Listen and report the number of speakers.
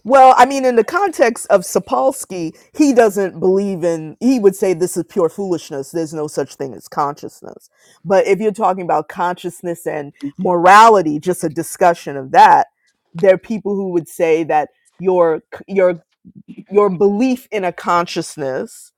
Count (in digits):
1